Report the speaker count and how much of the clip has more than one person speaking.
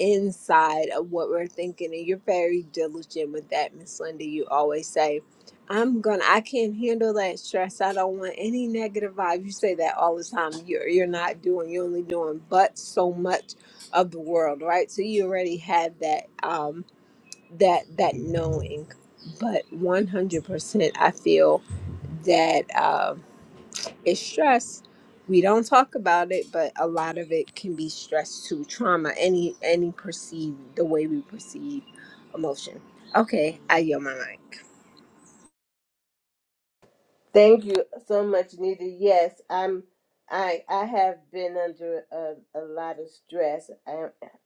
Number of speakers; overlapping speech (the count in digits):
2, no overlap